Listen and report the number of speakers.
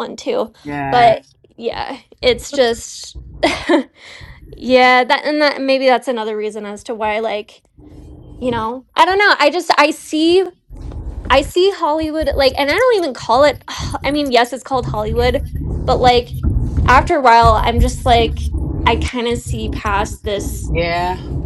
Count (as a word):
two